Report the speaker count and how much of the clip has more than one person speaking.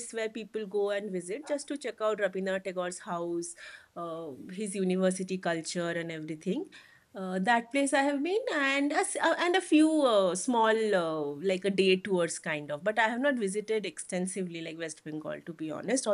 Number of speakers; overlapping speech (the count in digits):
1, no overlap